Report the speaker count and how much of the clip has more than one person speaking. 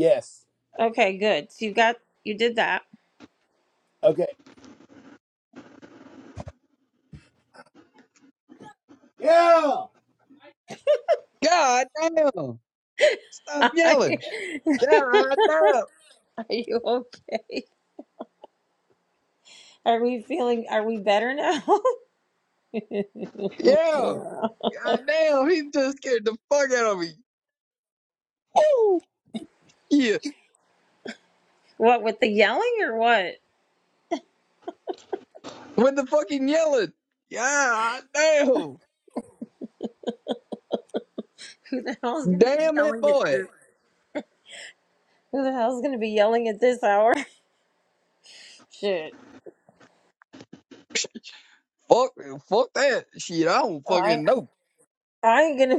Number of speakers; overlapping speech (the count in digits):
3, about 2%